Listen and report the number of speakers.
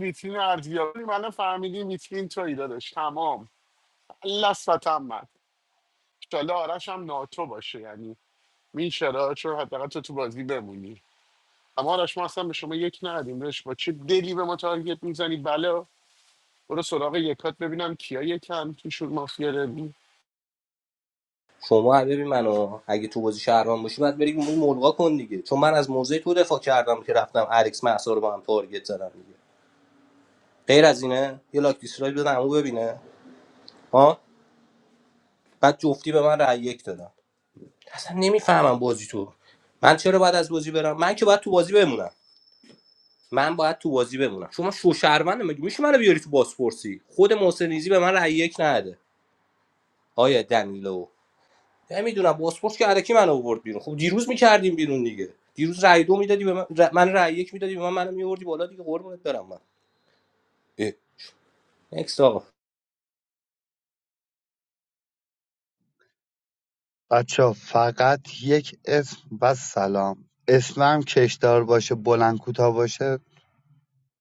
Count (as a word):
three